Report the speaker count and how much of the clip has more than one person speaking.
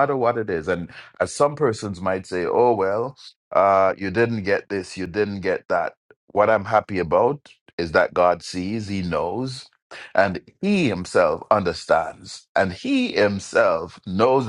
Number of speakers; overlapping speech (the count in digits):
1, no overlap